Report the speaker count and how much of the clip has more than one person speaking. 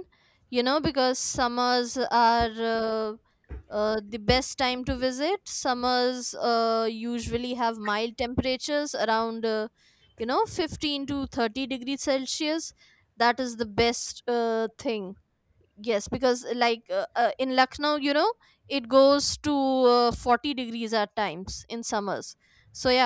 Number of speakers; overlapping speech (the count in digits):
1, no overlap